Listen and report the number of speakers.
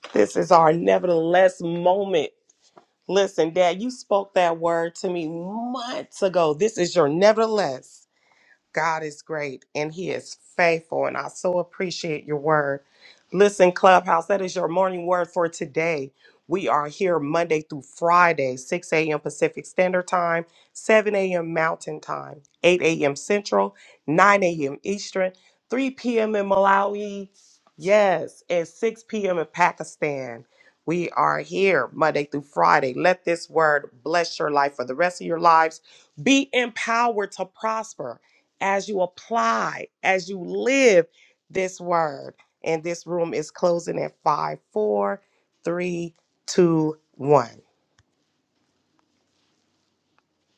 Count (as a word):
one